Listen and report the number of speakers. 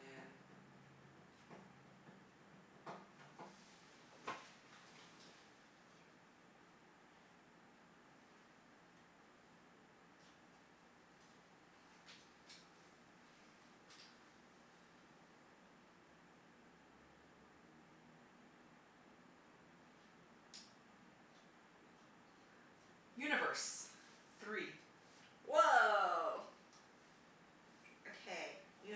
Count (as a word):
two